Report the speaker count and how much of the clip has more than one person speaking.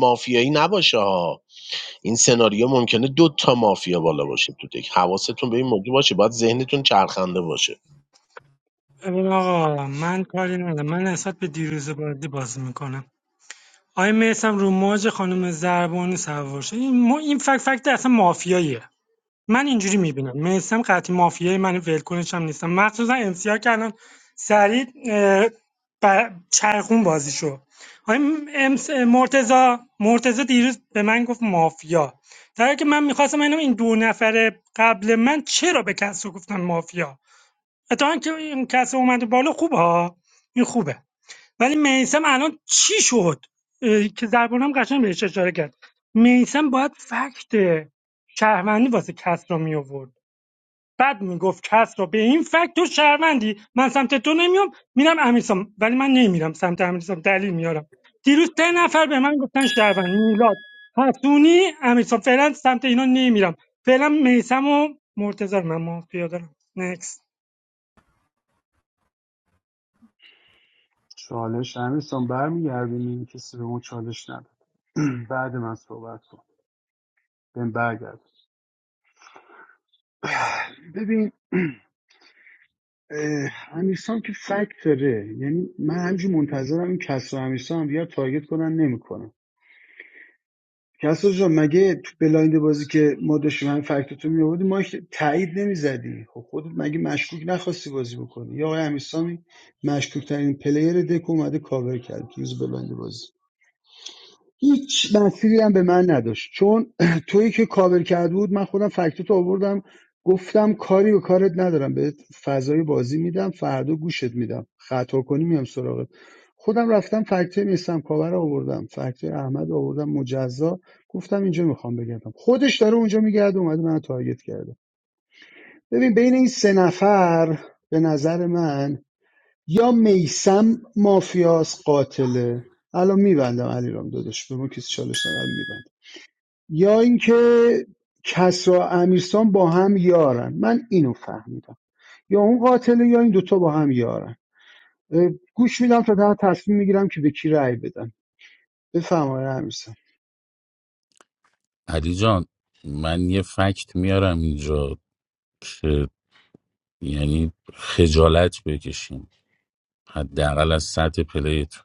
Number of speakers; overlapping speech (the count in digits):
4, no overlap